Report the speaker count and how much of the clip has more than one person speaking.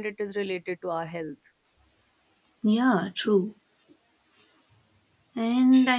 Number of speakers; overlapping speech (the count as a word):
two, no overlap